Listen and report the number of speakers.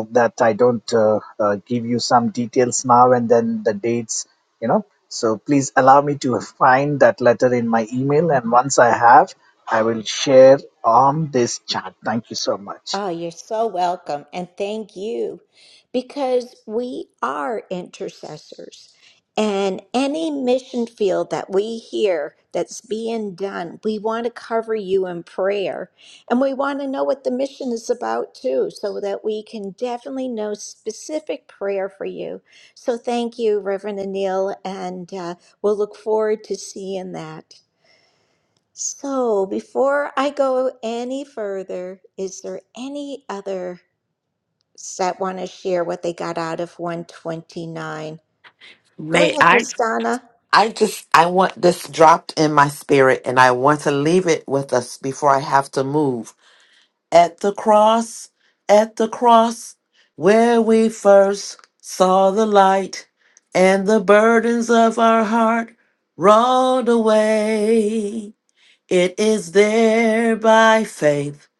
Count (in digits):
3